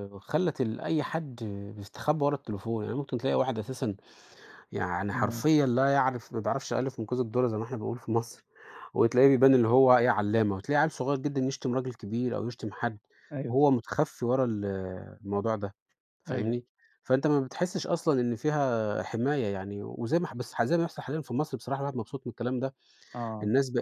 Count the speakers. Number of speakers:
two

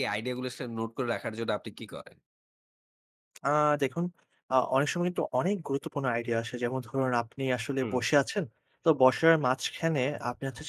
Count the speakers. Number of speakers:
two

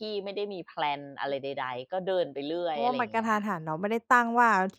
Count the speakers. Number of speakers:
two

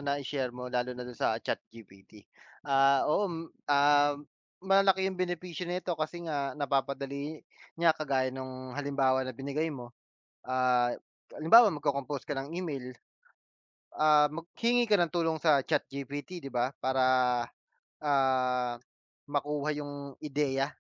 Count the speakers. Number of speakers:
one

